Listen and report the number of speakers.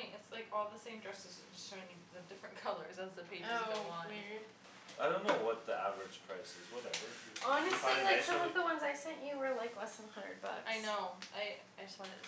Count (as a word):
three